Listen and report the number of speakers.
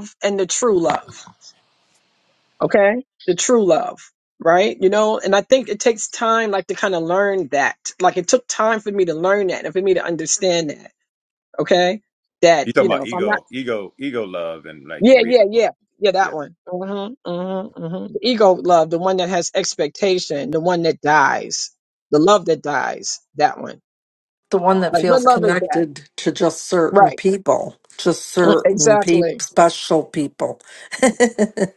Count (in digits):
3